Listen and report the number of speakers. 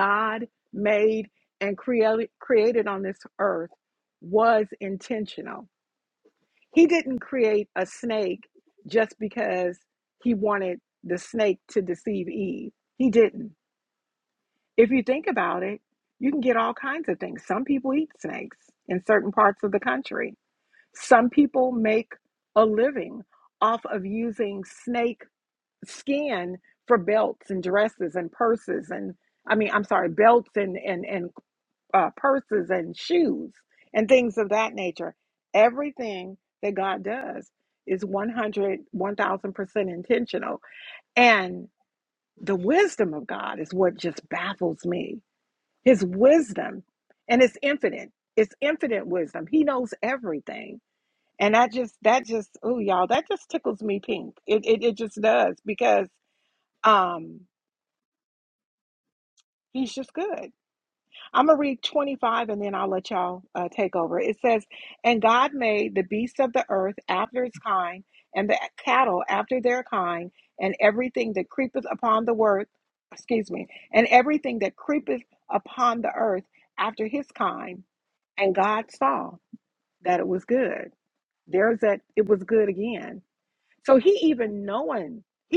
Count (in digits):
1